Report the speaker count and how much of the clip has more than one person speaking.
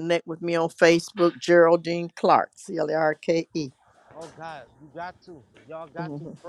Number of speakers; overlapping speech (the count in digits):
2, about 6%